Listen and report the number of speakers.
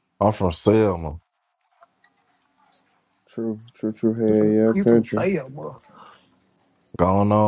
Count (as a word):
three